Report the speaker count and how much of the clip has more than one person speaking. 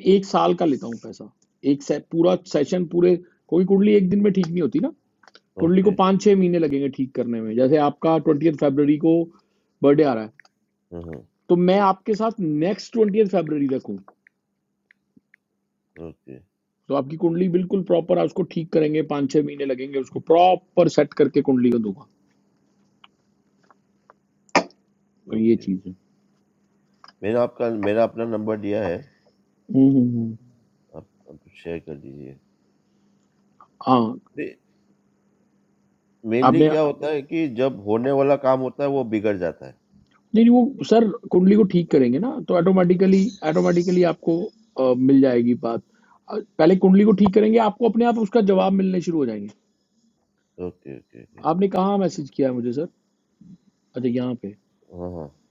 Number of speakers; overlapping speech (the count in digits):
2, about 2%